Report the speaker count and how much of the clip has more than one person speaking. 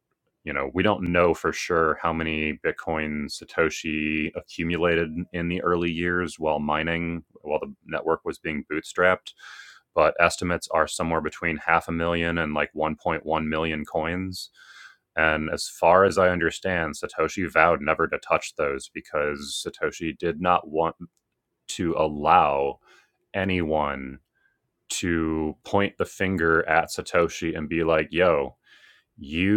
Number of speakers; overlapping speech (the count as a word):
one, no overlap